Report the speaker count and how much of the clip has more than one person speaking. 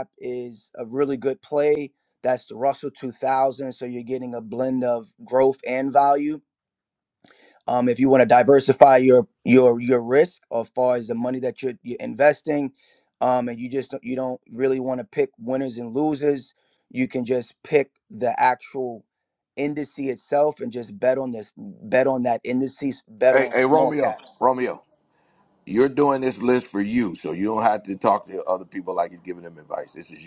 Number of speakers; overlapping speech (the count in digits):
2, about 3%